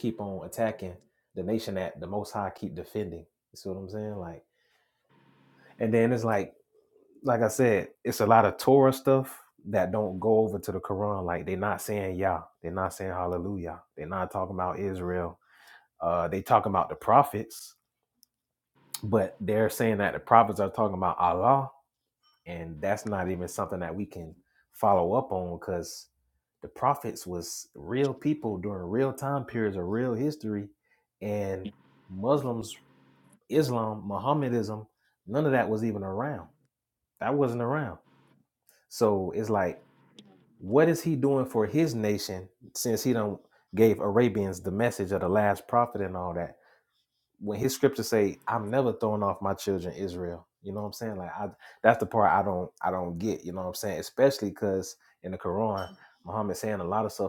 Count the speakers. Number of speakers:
one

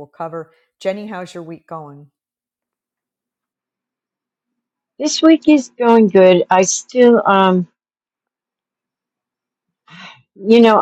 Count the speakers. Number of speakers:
two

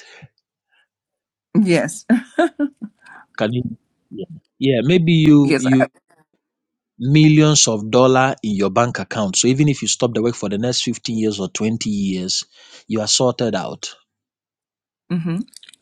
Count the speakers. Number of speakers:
two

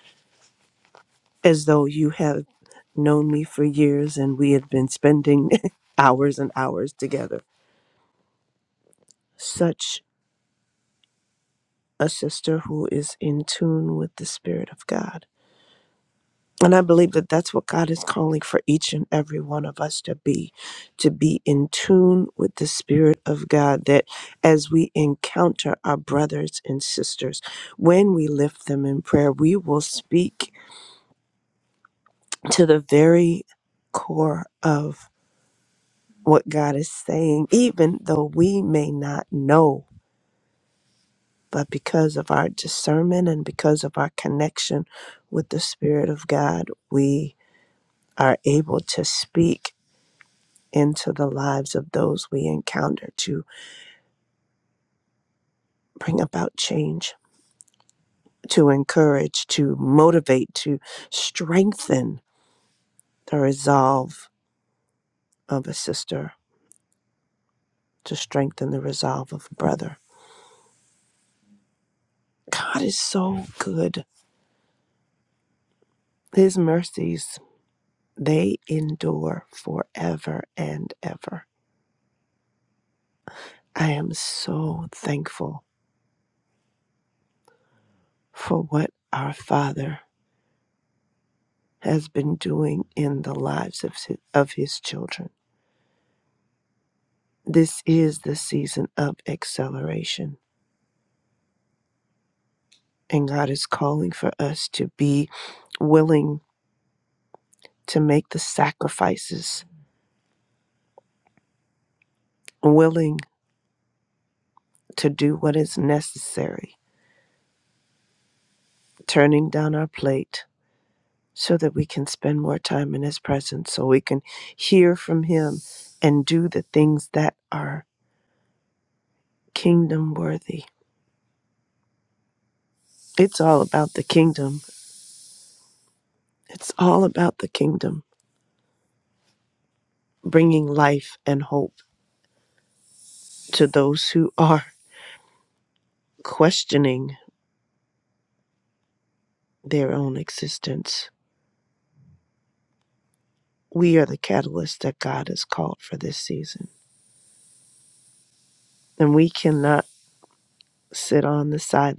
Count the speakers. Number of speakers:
one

